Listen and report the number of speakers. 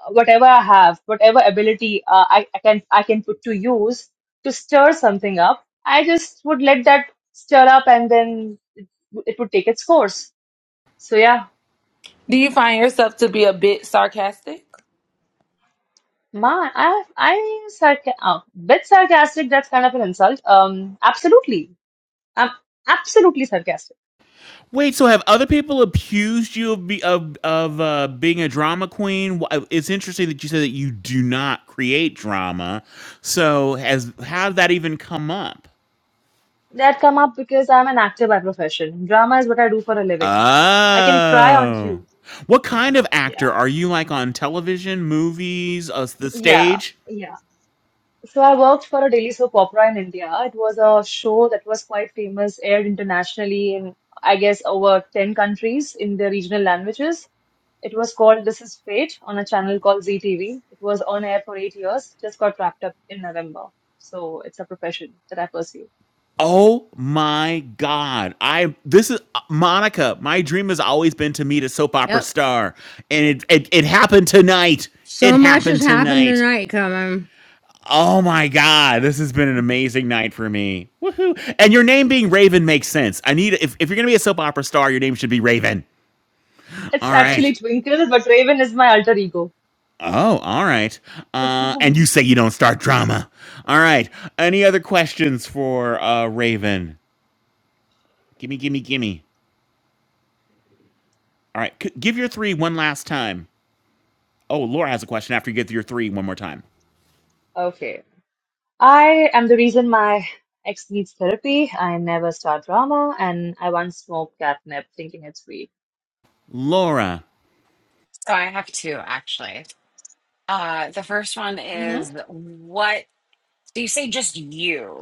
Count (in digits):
5